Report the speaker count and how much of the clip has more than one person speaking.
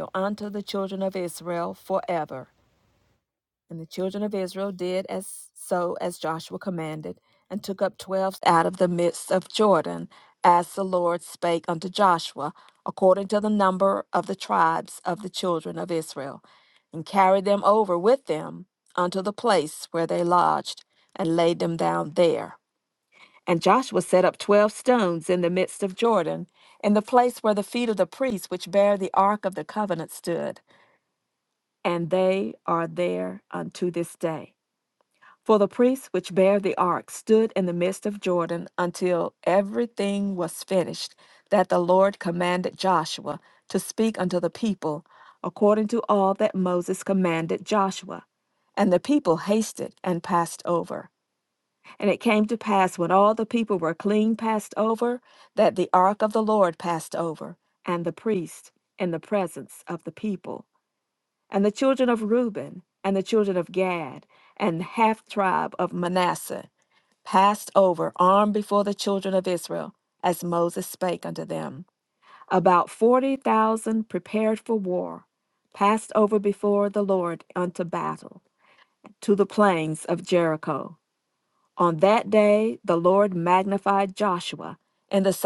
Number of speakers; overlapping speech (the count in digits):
1, no overlap